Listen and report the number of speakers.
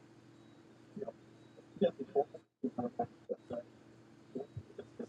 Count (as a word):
zero